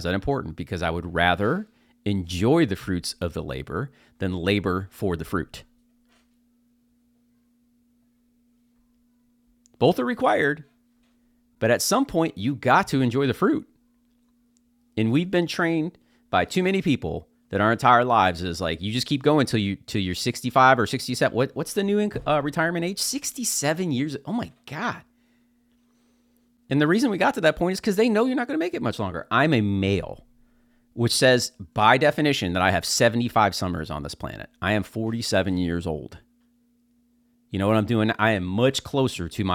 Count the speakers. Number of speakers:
one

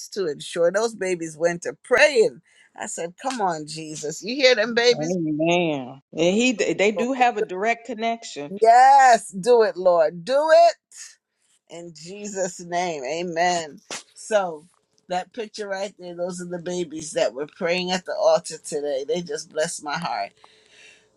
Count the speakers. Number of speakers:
two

